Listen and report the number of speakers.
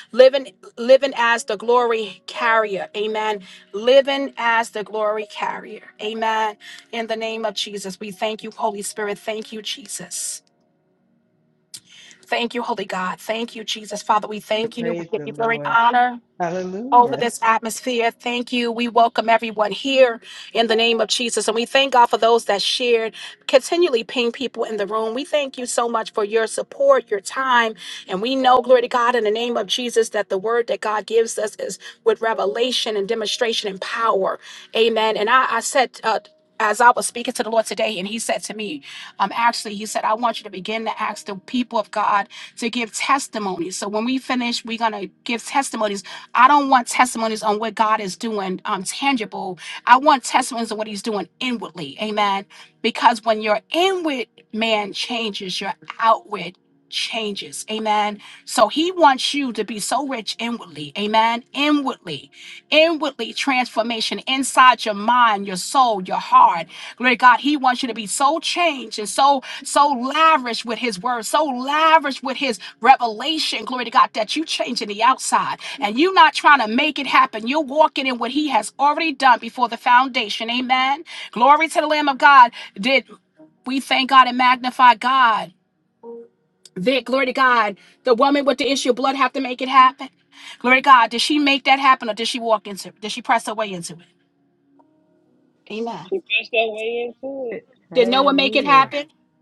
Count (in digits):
3